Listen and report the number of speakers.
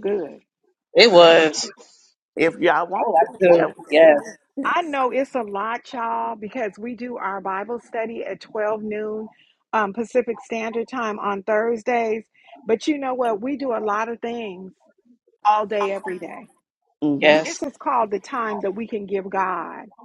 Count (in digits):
3